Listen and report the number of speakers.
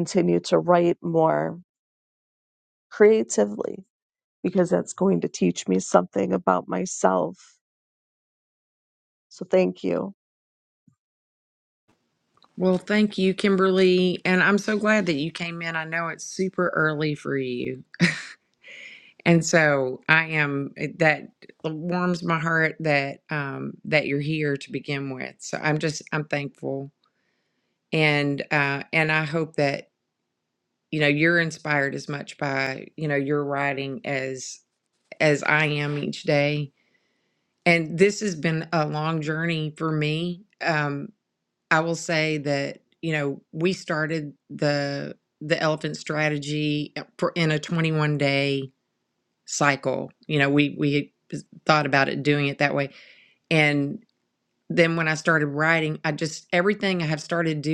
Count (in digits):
2